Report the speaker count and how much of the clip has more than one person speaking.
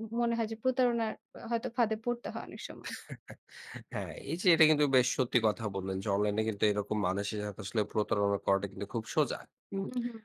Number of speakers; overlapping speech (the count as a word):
two, under 1%